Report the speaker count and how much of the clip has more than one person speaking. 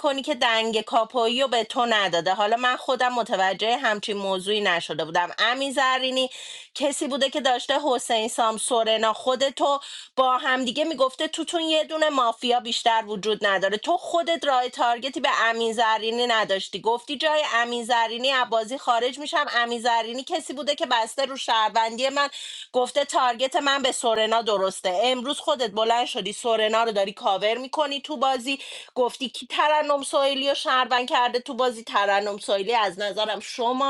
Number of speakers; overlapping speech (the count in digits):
1, no overlap